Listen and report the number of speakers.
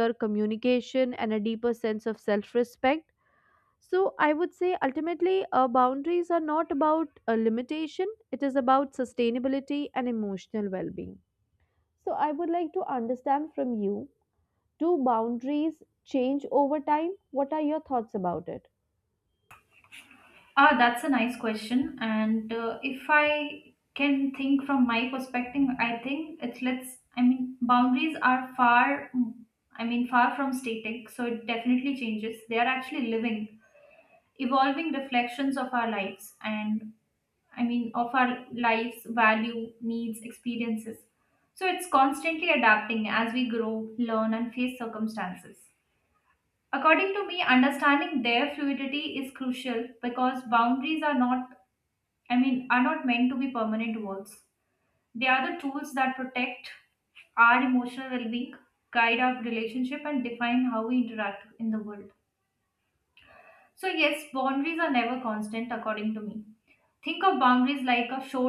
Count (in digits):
2